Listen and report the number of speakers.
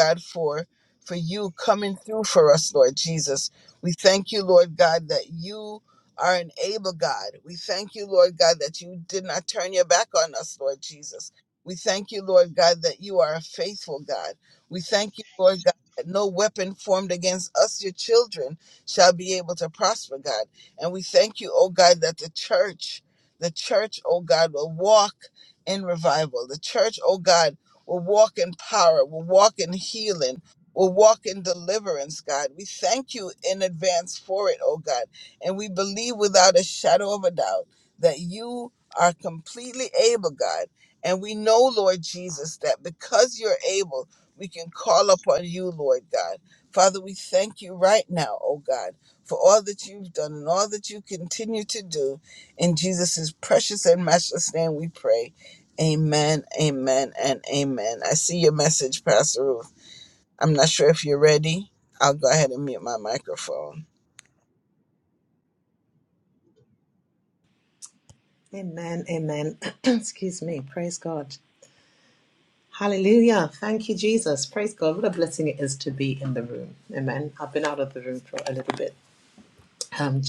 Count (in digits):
2